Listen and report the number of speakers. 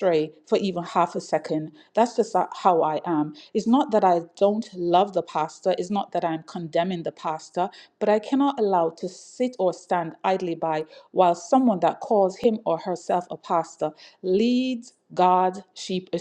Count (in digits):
1